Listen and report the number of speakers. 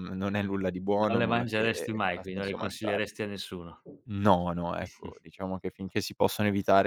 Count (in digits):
2